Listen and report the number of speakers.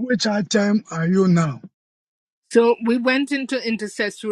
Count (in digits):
2